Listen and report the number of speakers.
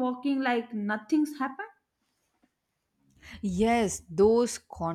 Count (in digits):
2